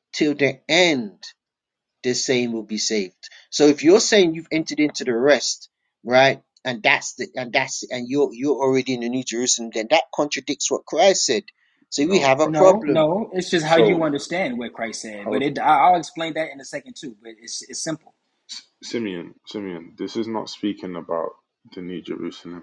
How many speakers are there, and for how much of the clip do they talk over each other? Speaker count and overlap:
3, about 7%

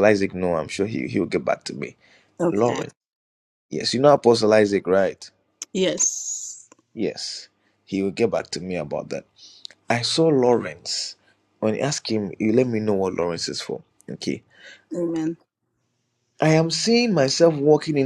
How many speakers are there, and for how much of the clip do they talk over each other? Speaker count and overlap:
2, about 2%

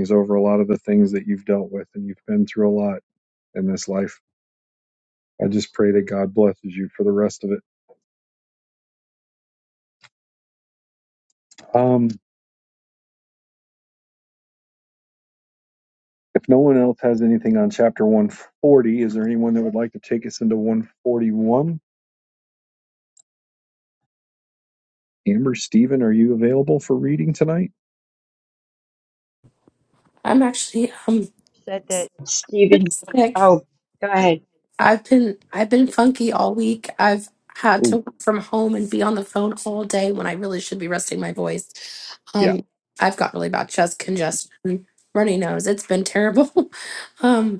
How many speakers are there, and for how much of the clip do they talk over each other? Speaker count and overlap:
3, about 1%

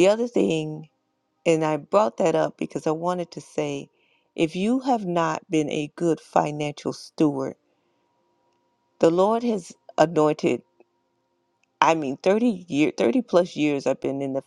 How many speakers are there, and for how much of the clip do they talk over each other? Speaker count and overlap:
1, no overlap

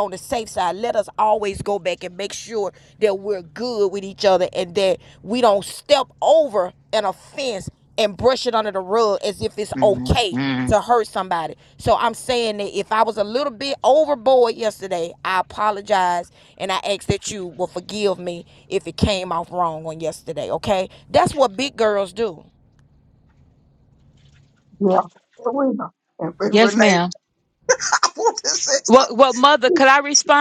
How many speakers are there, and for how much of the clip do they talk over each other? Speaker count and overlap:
3, about 4%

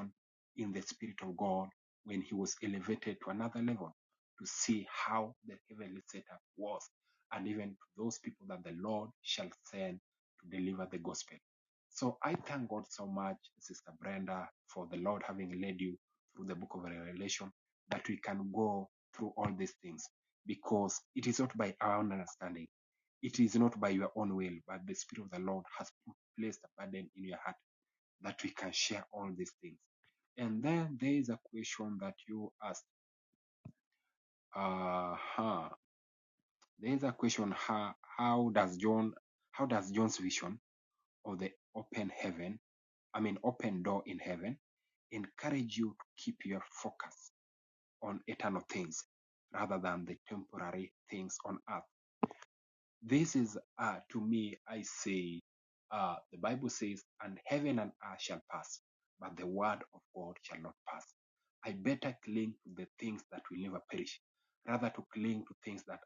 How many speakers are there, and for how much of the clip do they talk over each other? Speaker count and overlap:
1, no overlap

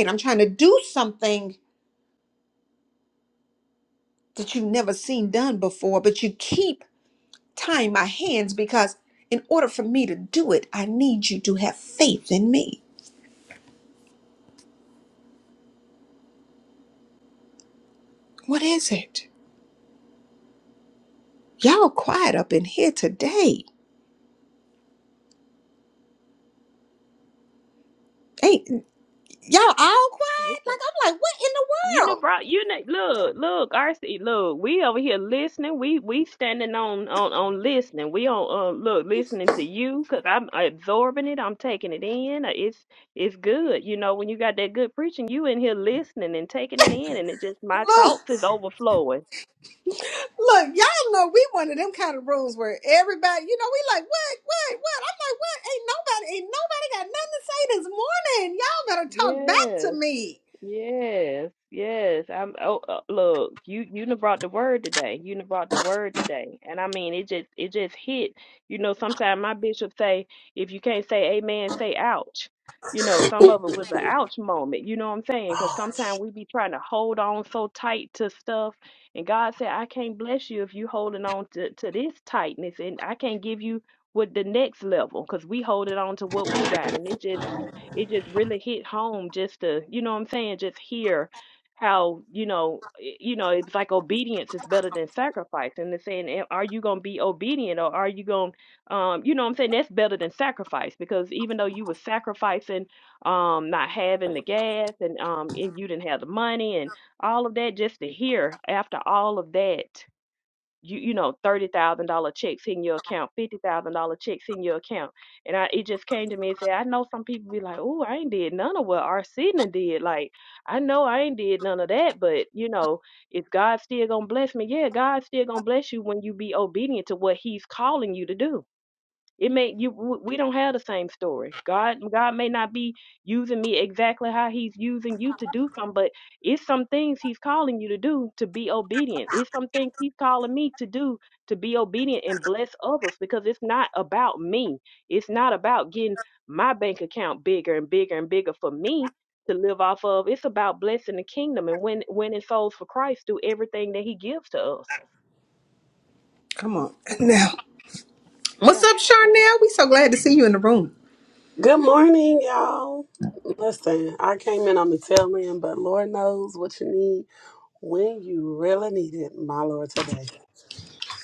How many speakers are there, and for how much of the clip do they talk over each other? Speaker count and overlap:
3, about 1%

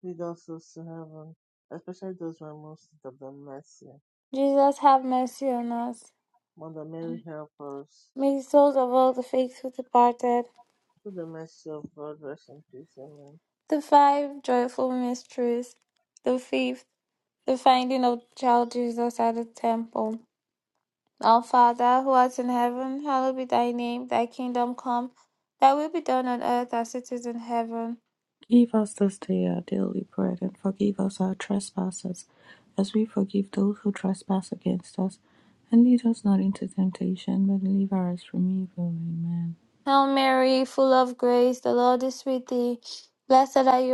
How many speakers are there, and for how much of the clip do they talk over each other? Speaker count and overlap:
3, no overlap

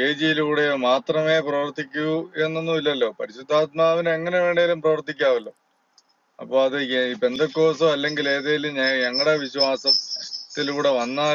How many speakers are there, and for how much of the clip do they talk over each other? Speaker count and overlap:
1, no overlap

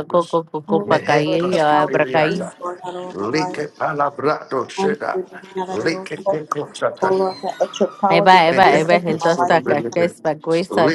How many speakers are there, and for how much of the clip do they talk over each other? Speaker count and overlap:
3, about 59%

